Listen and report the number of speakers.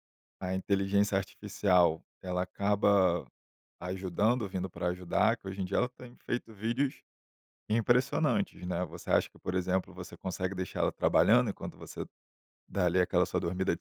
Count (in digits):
1